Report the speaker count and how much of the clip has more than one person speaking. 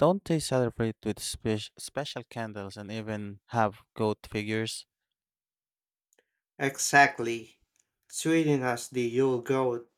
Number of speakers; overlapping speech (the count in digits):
2, no overlap